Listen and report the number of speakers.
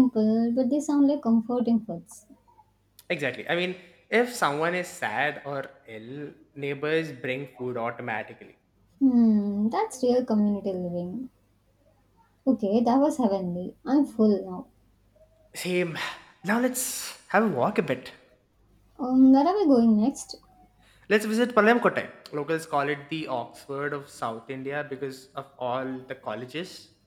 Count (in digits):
2